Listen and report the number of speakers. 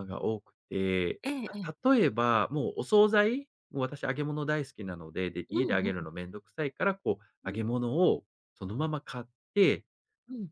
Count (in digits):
2